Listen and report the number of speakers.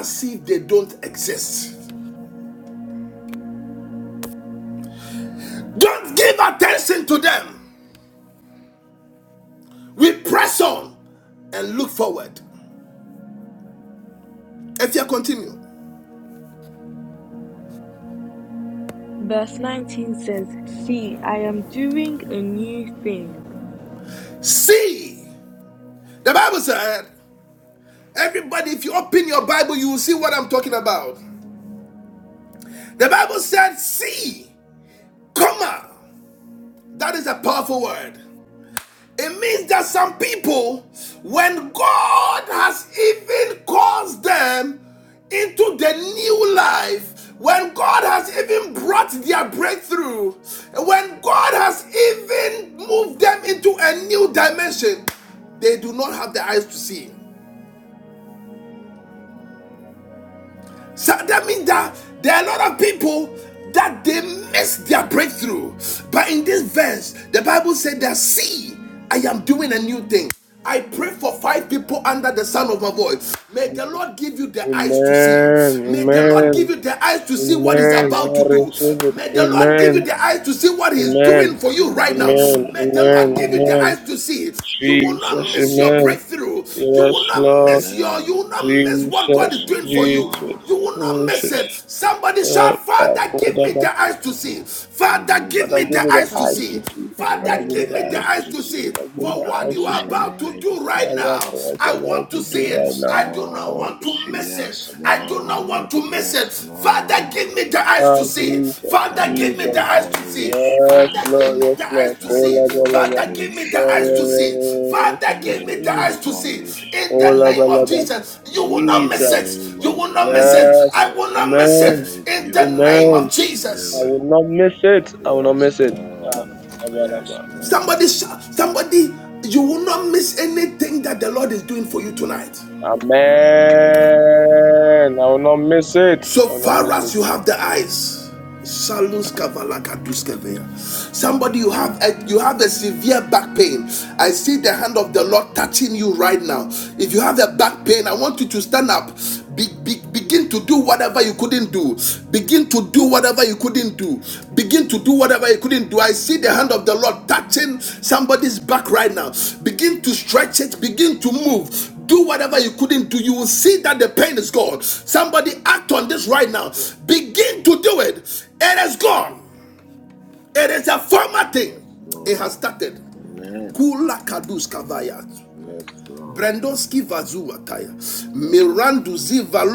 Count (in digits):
4